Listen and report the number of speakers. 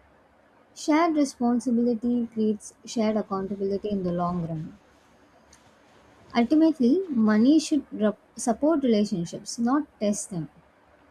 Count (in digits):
1